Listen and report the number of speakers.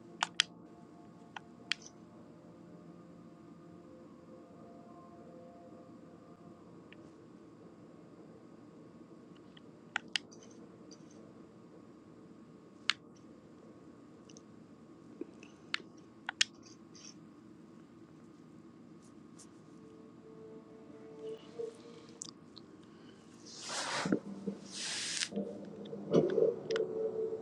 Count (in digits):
0